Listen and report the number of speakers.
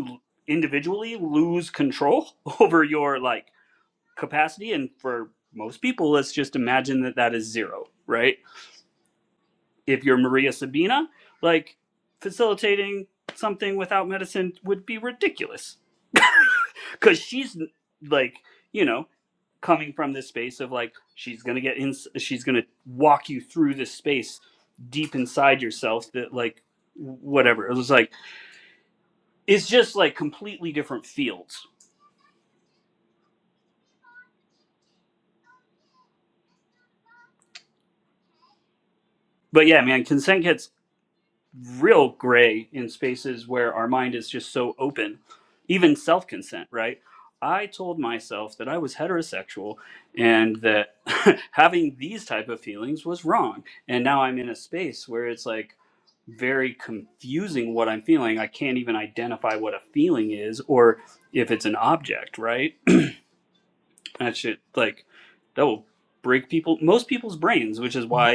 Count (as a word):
one